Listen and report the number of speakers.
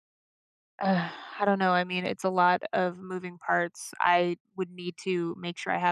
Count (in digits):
1